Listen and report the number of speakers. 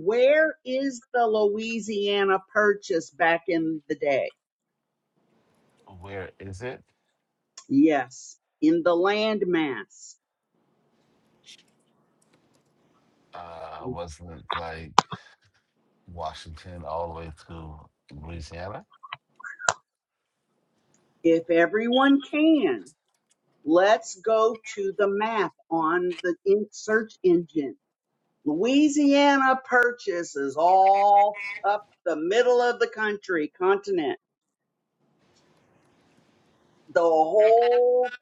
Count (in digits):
2